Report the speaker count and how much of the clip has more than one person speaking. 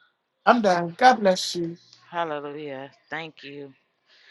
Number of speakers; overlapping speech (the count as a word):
two, no overlap